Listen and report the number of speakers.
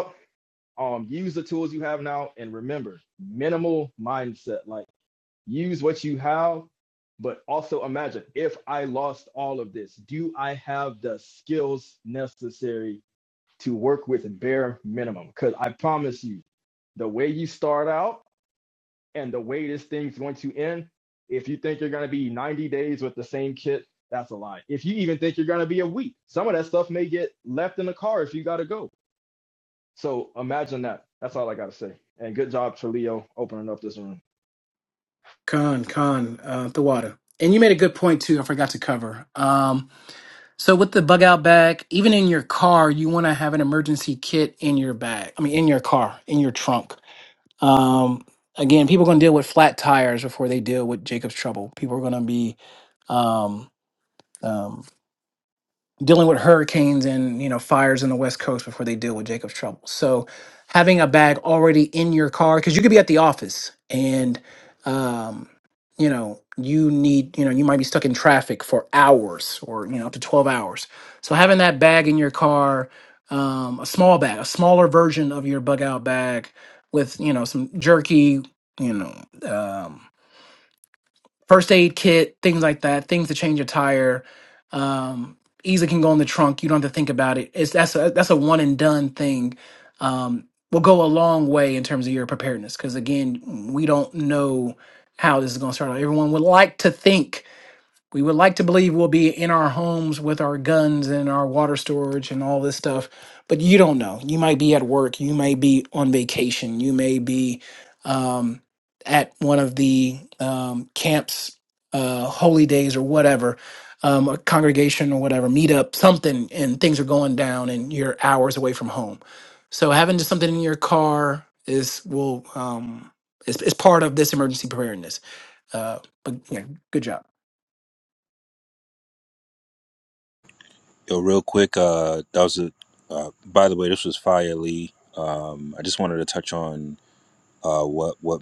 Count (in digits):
3